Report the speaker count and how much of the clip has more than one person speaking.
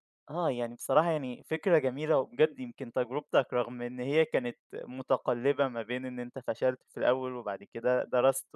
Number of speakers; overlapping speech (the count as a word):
one, no overlap